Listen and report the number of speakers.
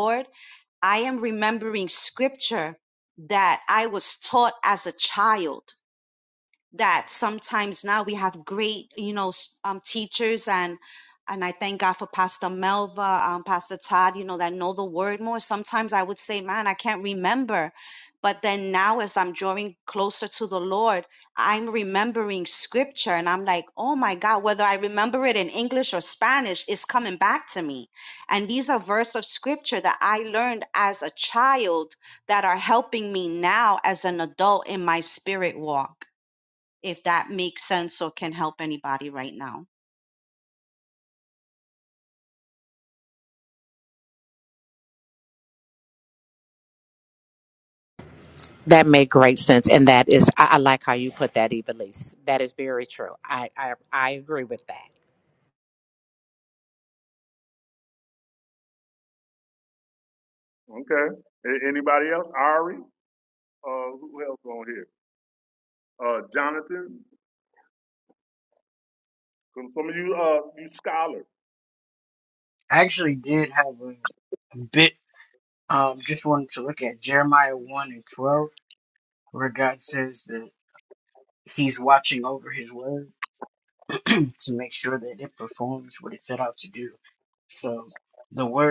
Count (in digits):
4